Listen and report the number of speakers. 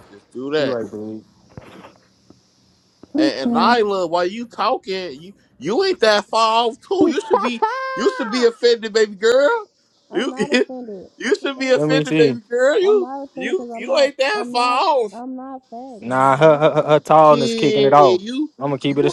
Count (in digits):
3